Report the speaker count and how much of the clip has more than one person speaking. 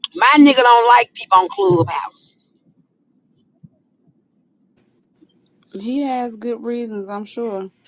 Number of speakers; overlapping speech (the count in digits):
2, no overlap